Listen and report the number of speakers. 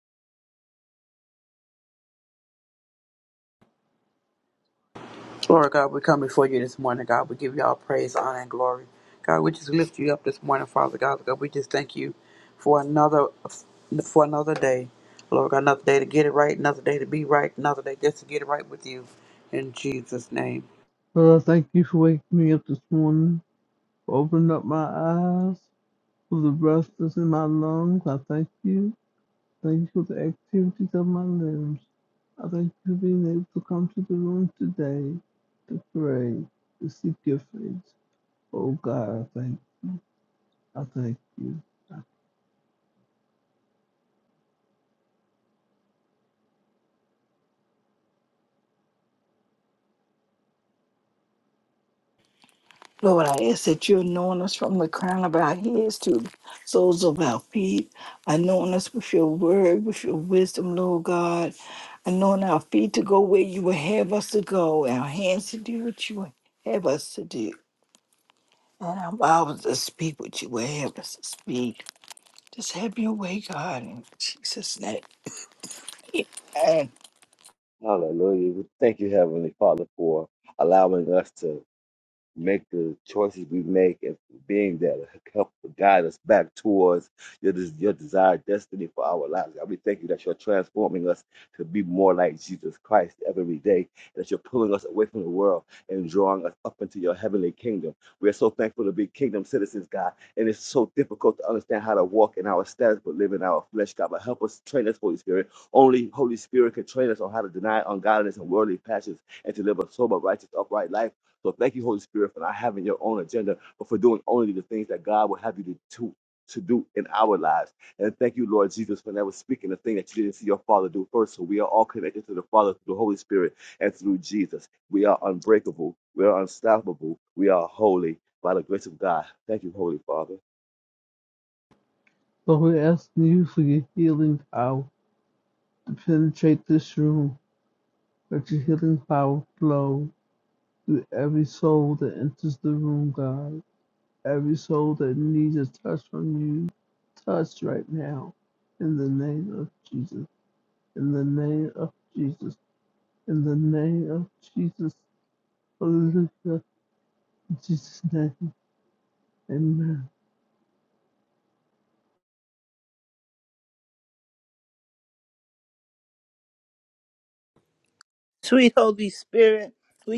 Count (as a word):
five